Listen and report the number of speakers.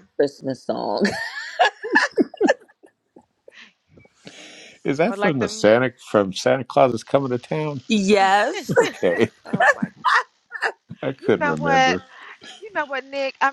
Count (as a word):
three